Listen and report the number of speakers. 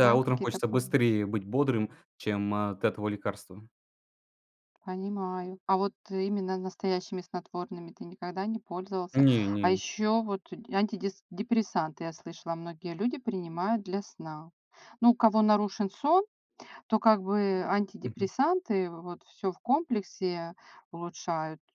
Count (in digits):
2